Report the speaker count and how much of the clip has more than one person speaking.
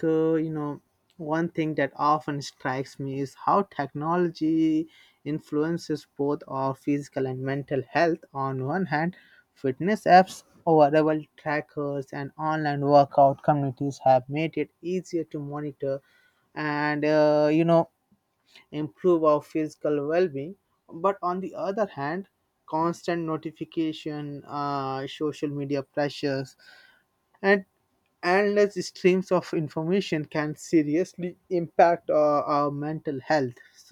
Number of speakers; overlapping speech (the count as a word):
one, no overlap